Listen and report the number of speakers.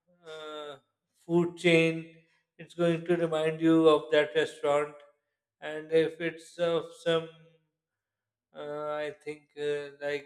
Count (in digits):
1